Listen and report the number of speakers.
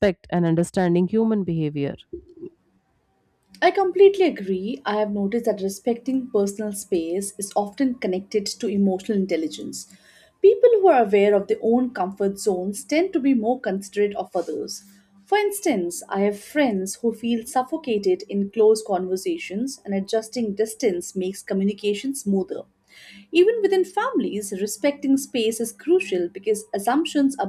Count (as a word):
two